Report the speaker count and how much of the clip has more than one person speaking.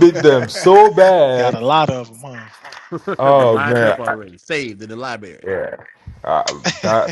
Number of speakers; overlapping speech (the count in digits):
3, about 24%